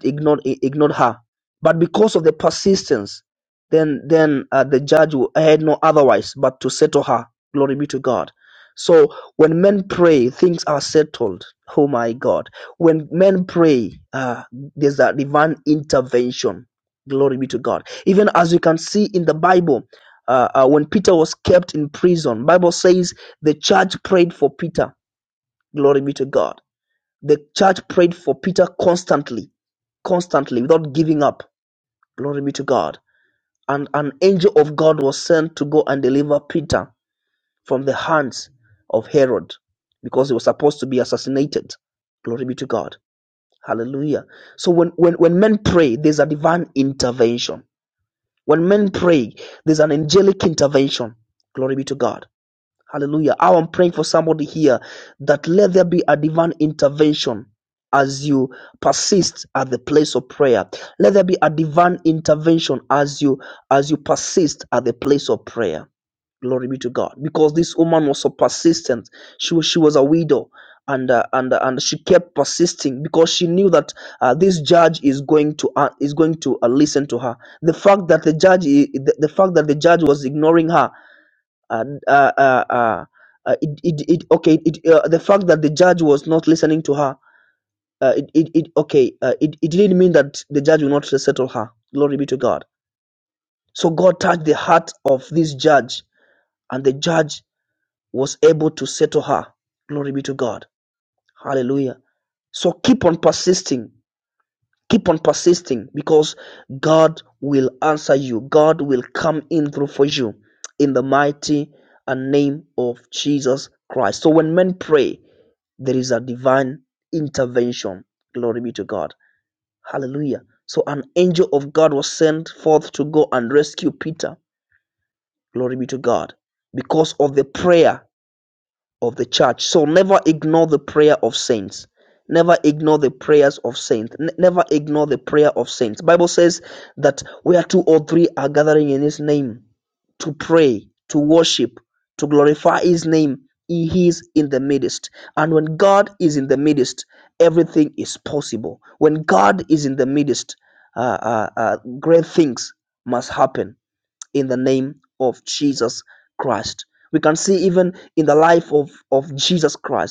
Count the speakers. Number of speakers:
1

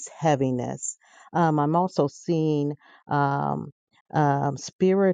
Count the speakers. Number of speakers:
1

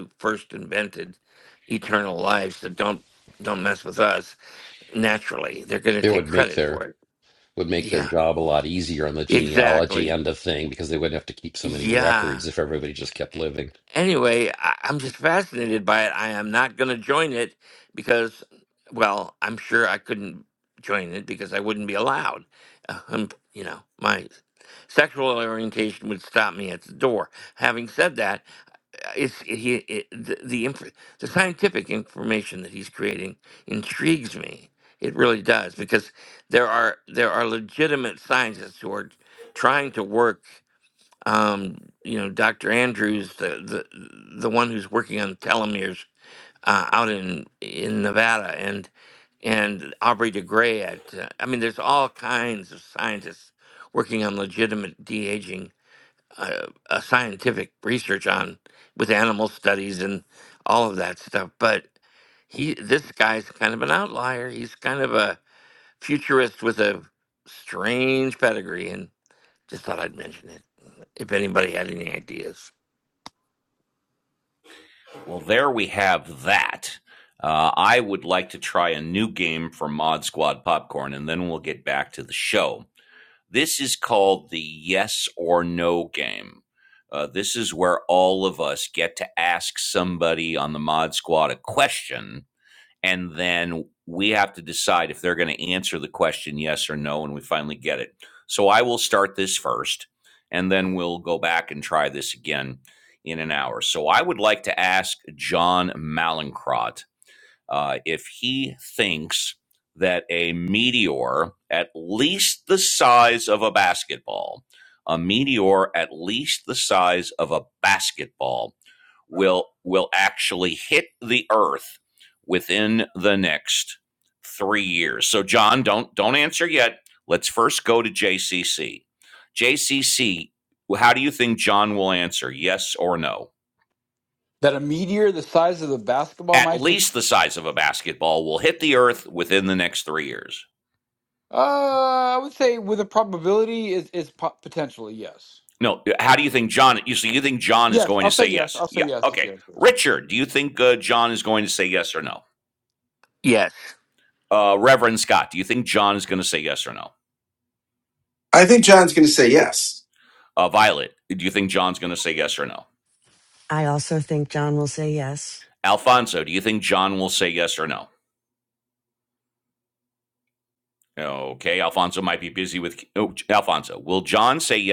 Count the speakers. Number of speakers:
6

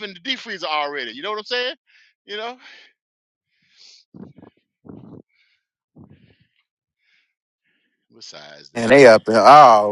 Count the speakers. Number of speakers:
2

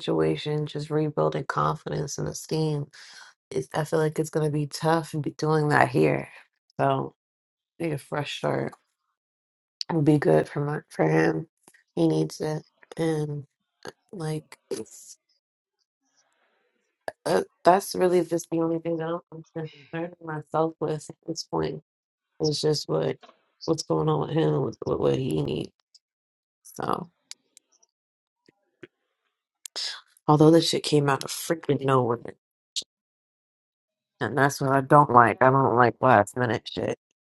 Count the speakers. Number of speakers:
1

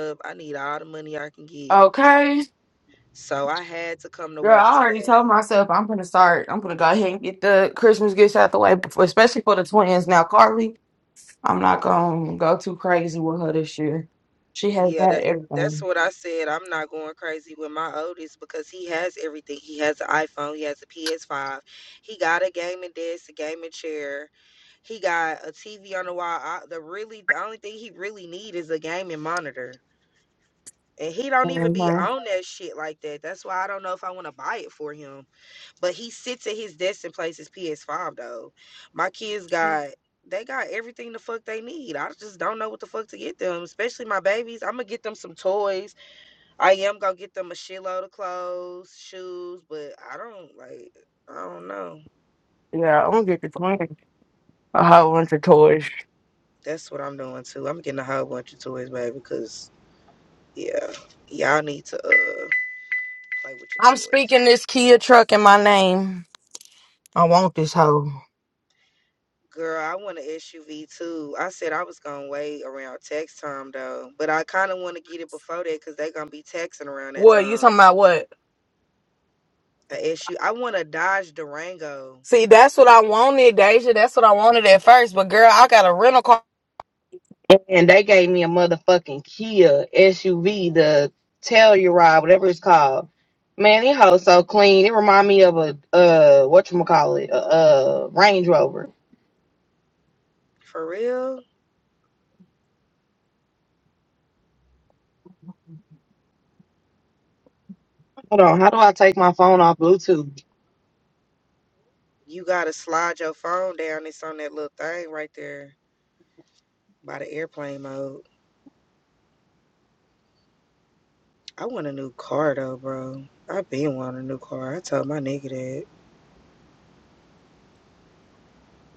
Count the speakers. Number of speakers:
2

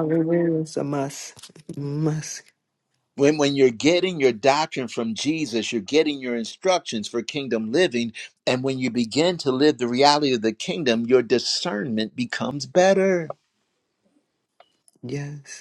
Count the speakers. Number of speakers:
2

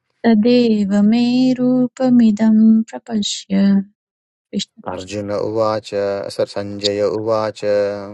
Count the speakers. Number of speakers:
2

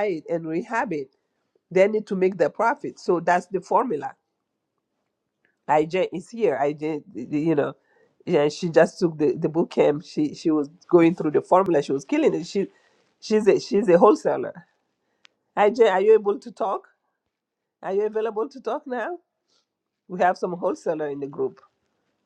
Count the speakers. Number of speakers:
1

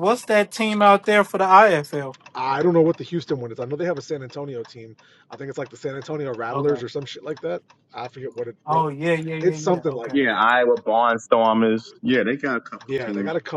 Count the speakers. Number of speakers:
3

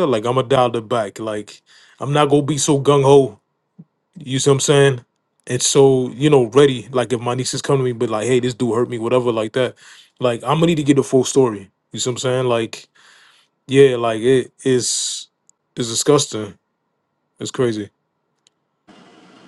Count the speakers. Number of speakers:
1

